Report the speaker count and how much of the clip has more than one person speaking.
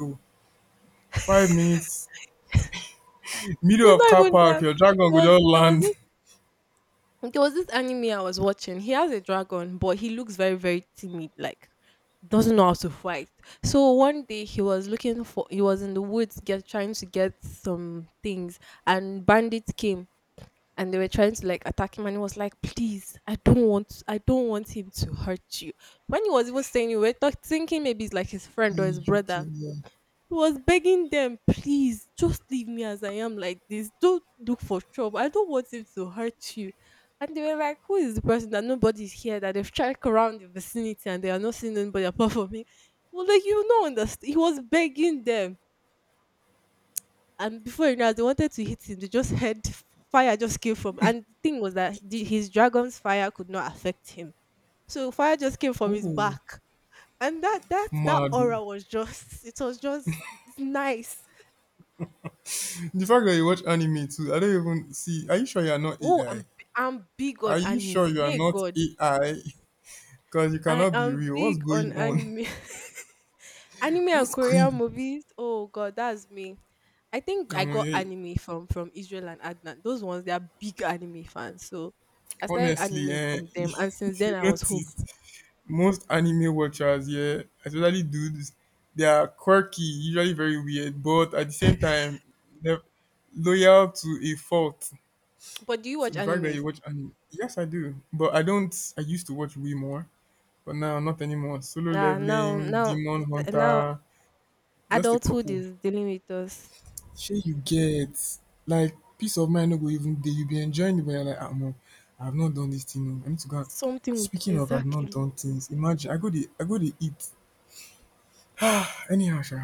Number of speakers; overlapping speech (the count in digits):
2, about 11%